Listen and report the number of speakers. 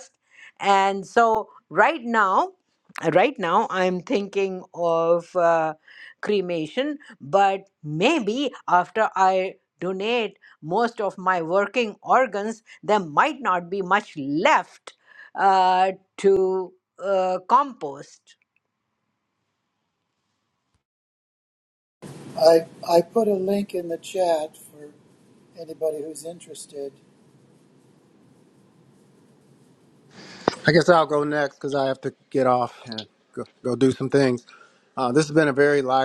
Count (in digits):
3